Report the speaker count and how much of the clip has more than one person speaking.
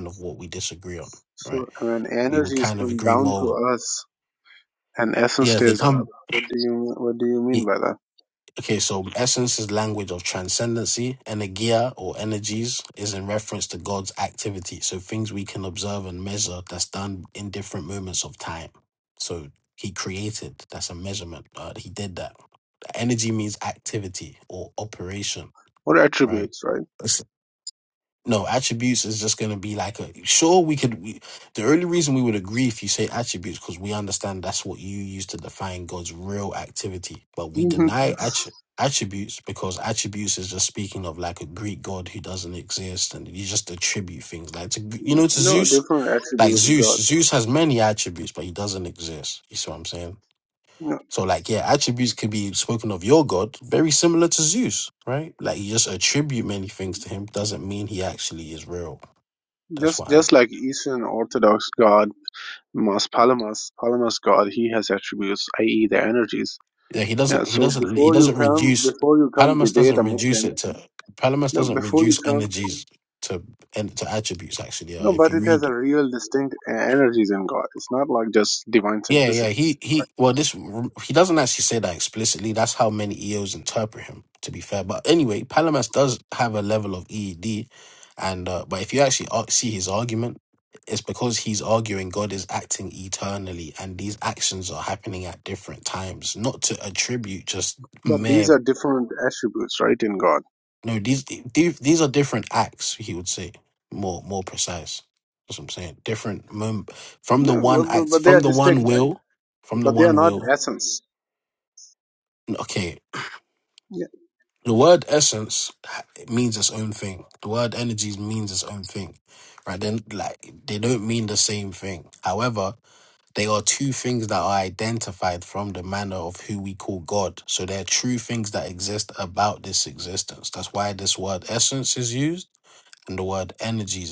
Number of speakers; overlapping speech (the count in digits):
2, about 9%